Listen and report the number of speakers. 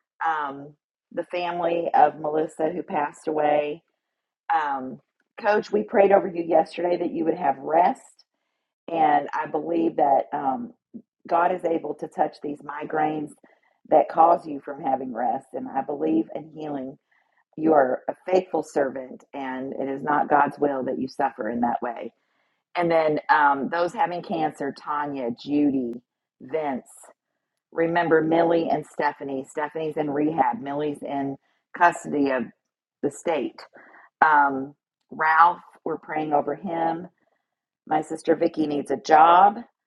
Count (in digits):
1